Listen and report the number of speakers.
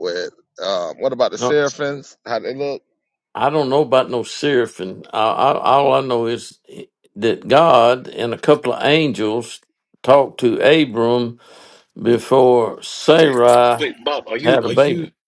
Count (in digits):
3